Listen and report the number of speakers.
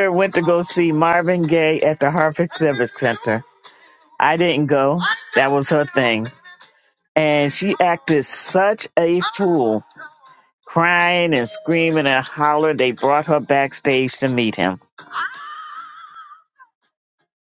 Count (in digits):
1